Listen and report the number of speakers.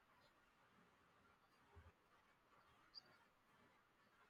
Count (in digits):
0